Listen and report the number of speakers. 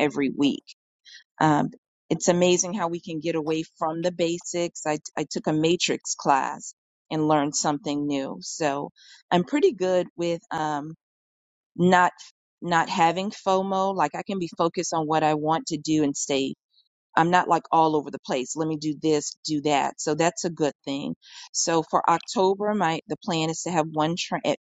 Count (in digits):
1